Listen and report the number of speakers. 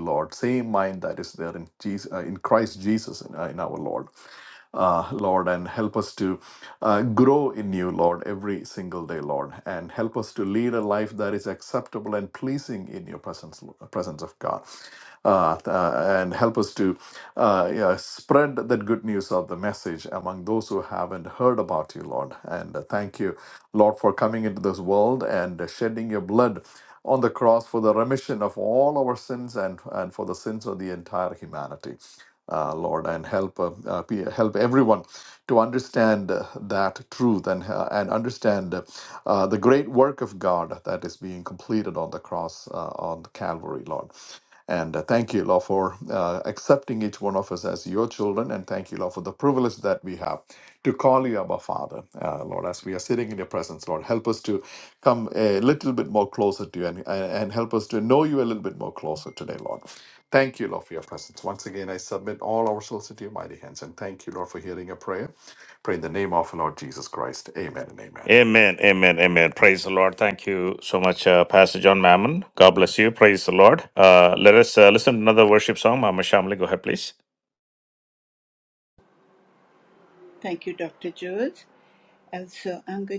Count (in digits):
3